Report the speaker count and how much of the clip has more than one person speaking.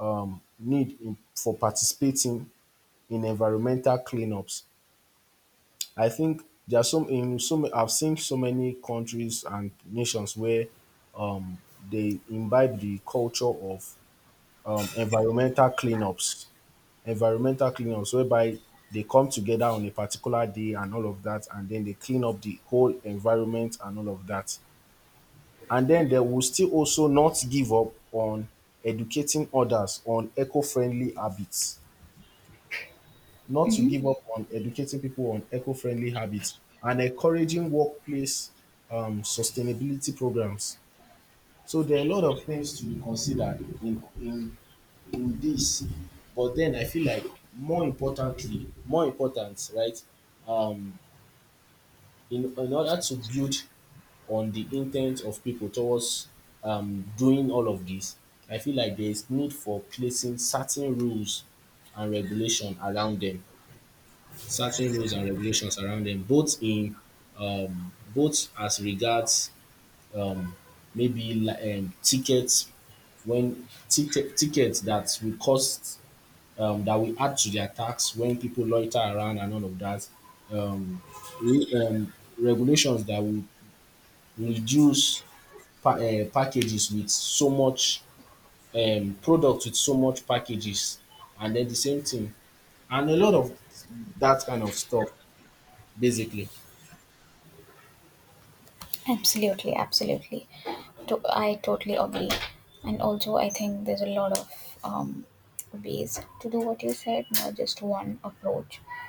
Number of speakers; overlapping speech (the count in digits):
2, no overlap